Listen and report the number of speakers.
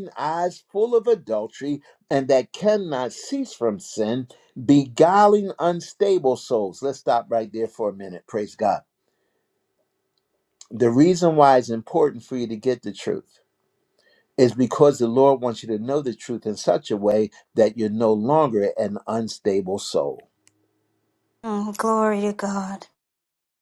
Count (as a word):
two